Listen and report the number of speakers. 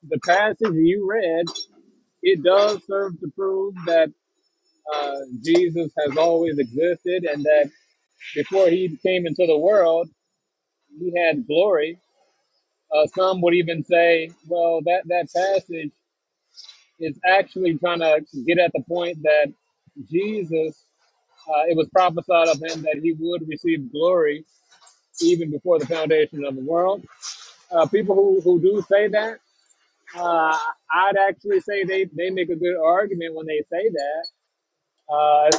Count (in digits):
1